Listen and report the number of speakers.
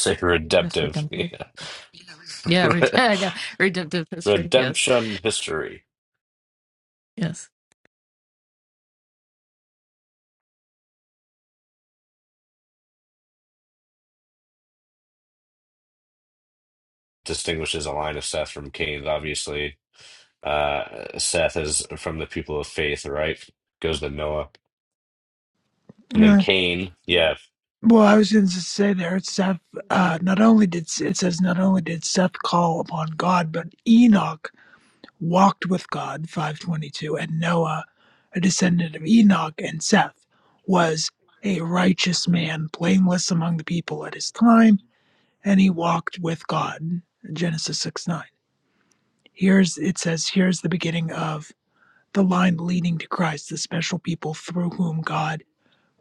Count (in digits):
3